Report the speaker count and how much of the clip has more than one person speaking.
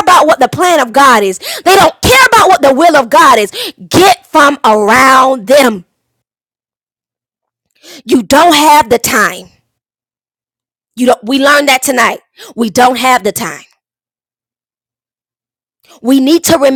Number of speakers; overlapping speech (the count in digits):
1, no overlap